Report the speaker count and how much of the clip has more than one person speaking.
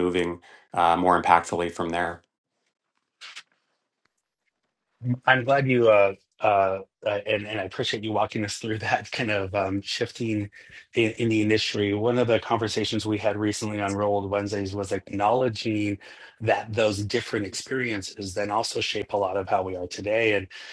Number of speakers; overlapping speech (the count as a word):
two, no overlap